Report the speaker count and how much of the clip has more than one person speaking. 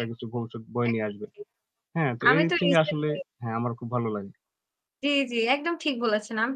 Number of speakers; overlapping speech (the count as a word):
two, about 17%